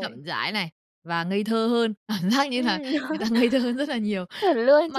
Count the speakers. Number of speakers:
2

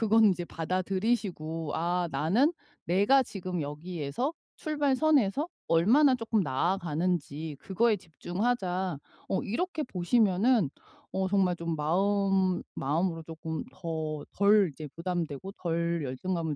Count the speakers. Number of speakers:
1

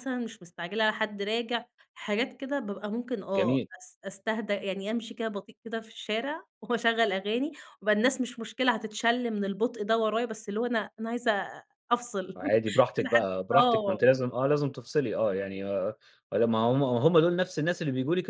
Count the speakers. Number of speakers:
2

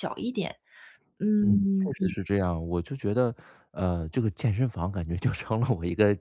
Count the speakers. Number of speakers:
2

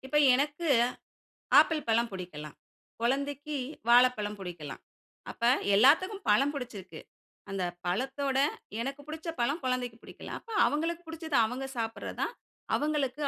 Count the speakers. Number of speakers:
1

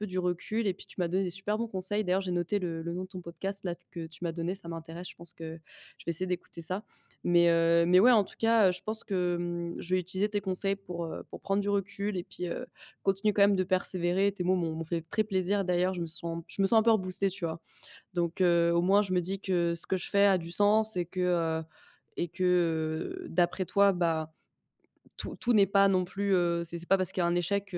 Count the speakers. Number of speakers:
1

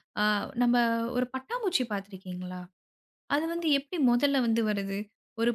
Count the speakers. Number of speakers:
1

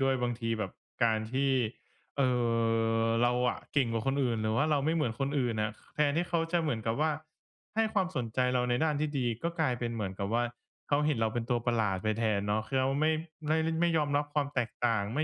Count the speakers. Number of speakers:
1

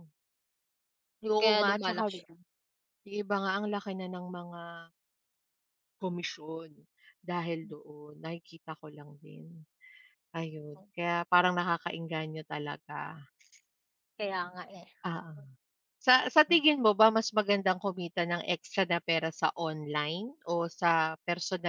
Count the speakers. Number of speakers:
2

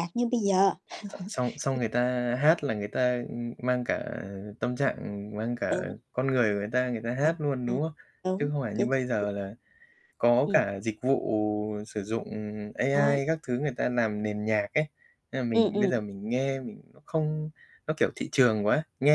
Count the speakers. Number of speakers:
2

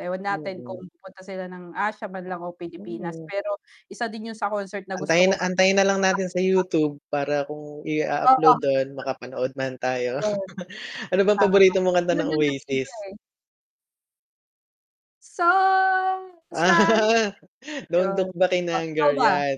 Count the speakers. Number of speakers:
2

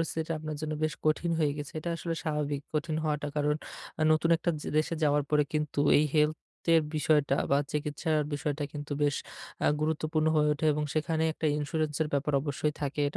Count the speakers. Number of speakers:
1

